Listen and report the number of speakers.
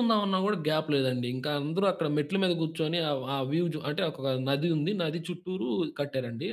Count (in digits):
1